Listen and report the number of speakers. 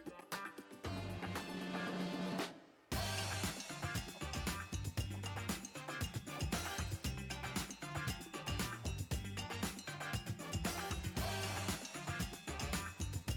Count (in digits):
0